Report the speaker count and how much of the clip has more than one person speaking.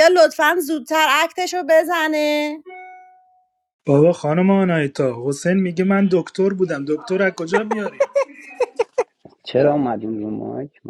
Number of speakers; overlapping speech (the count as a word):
three, no overlap